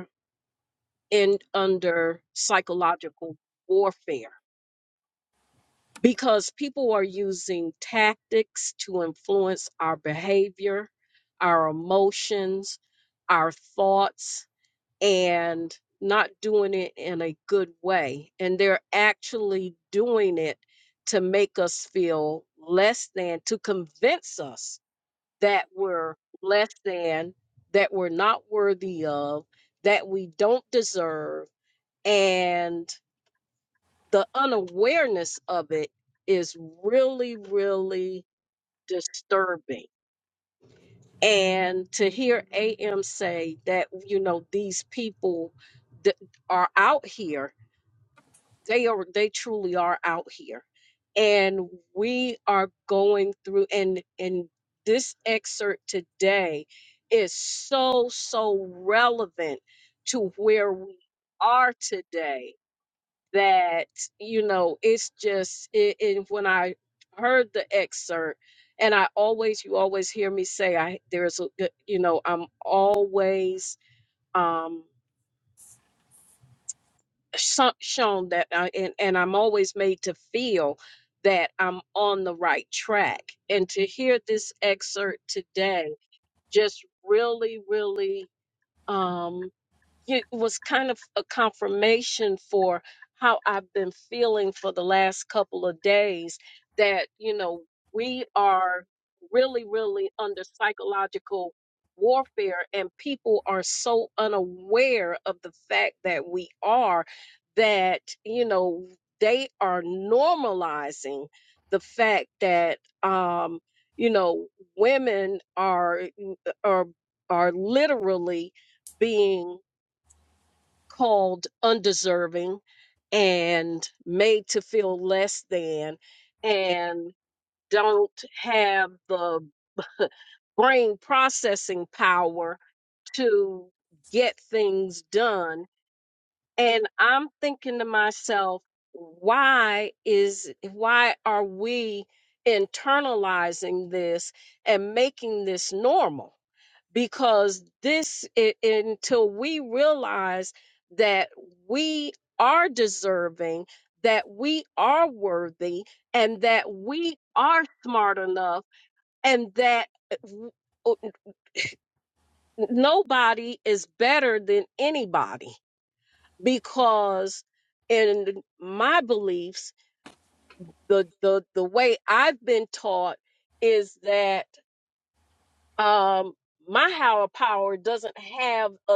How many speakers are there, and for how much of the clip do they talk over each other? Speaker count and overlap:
1, no overlap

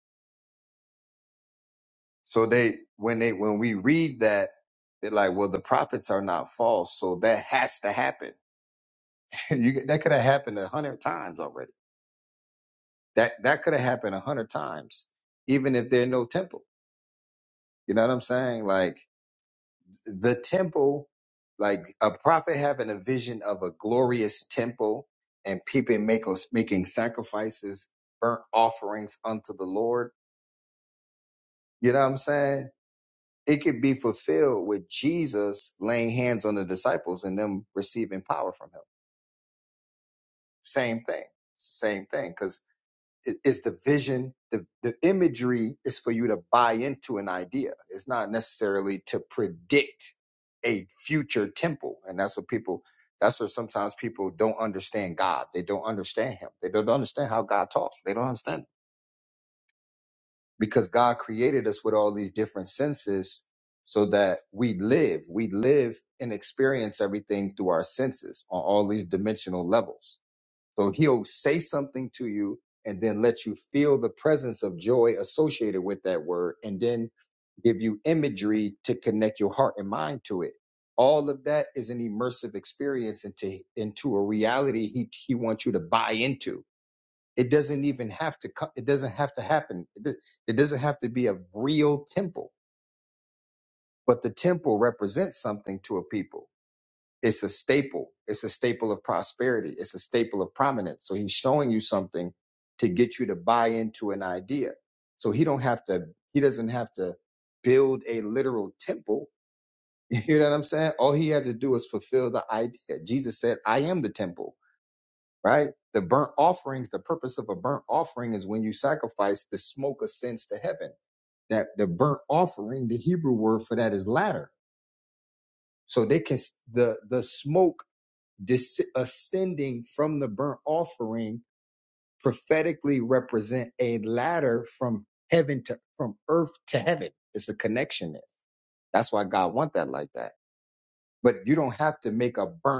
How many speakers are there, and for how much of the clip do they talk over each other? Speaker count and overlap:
1, no overlap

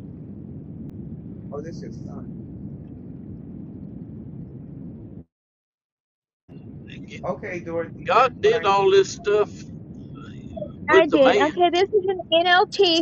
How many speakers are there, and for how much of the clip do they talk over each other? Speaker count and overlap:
3, about 11%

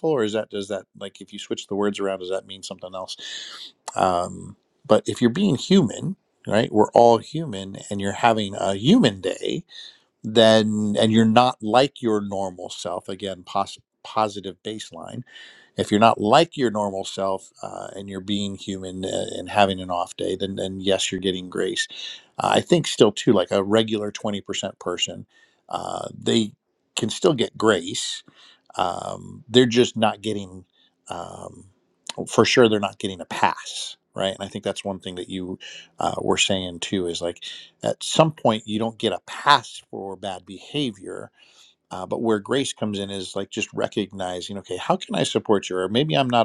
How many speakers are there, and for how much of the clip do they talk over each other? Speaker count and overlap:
1, no overlap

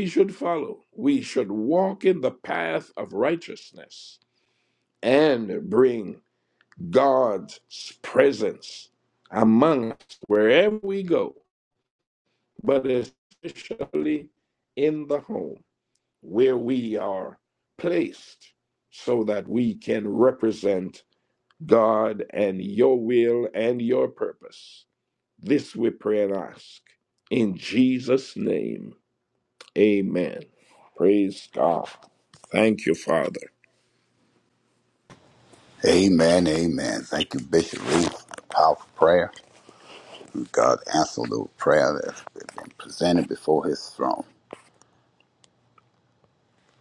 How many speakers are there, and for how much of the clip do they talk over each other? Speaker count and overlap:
2, no overlap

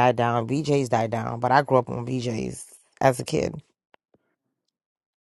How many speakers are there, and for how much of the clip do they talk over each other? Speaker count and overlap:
1, no overlap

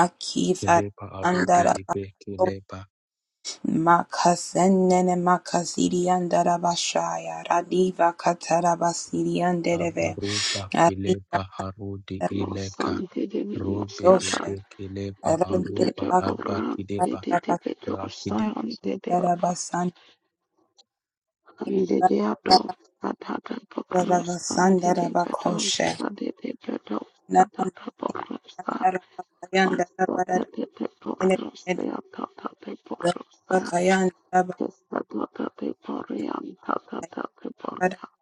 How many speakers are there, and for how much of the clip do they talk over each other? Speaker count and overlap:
3, about 24%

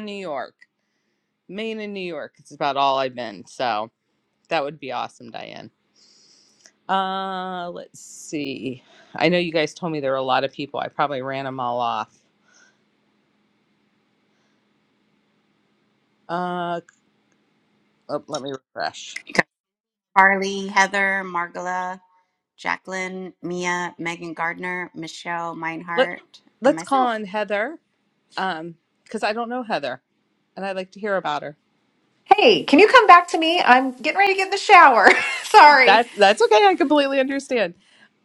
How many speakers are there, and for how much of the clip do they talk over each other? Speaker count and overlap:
3, about 2%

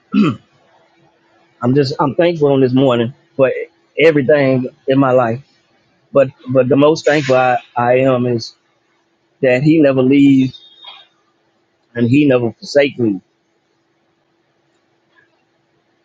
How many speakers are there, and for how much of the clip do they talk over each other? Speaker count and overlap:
1, no overlap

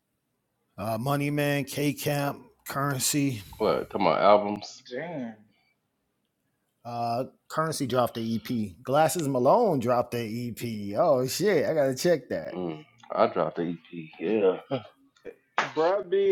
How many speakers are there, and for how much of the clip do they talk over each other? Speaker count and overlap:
3, under 1%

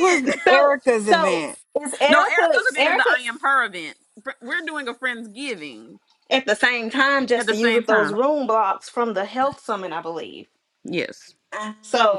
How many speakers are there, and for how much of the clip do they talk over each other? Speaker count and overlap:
3, about 25%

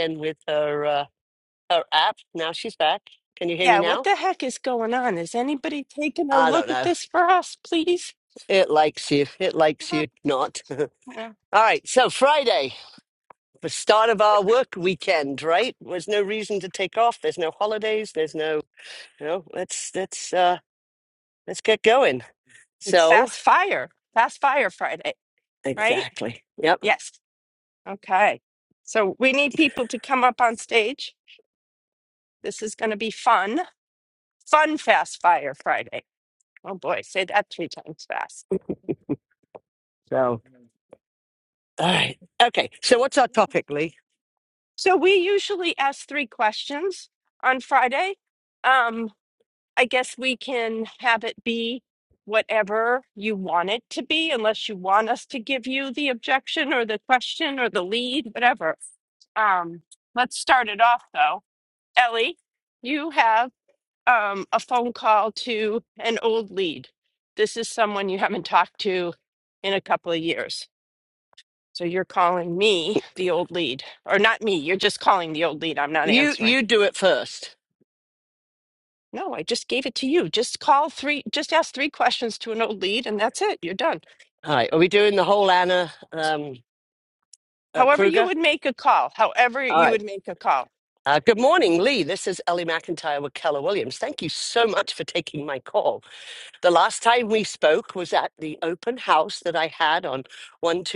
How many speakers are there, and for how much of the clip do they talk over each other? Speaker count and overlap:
2, about 3%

